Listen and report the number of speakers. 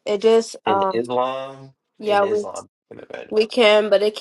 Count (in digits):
2